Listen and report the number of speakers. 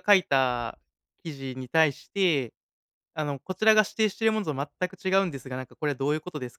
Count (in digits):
1